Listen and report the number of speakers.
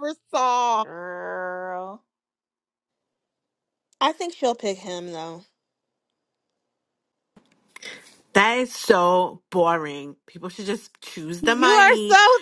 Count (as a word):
four